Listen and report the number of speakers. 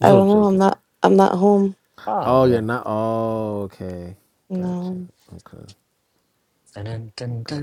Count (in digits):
3